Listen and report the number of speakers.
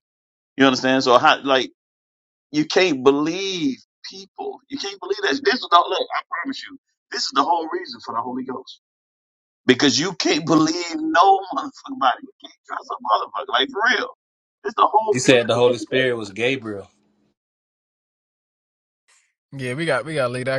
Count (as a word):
three